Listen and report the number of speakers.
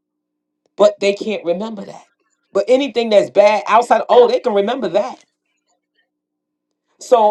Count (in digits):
1